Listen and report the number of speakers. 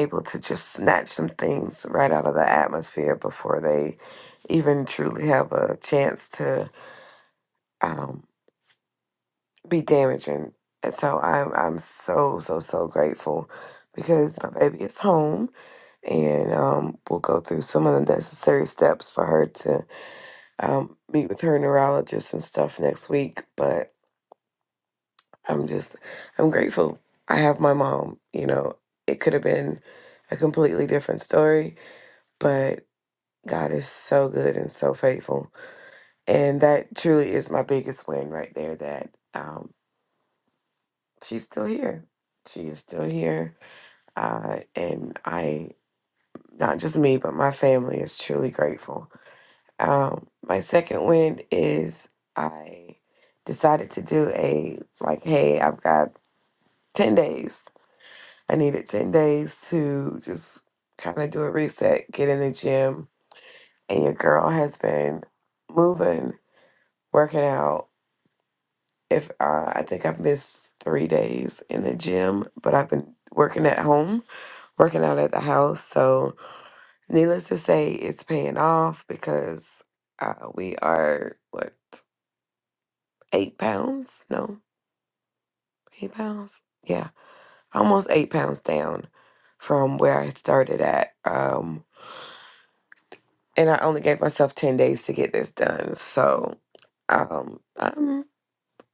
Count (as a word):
one